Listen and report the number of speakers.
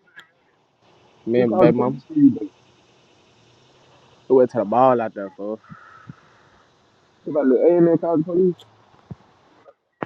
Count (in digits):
2